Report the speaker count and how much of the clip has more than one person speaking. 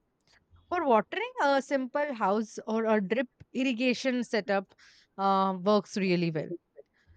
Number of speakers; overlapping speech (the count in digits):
1, no overlap